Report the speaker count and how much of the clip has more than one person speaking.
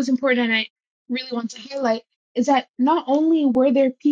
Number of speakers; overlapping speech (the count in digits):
1, no overlap